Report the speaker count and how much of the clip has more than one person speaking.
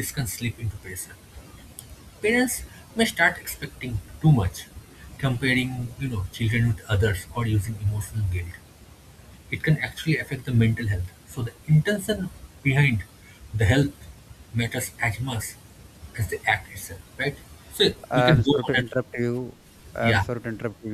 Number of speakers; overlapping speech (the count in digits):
2, about 5%